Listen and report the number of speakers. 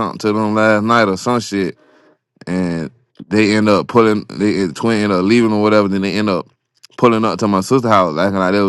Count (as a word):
one